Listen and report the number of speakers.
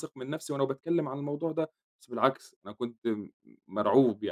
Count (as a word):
one